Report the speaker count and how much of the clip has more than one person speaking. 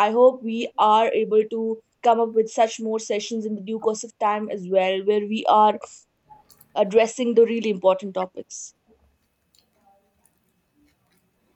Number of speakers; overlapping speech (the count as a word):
one, no overlap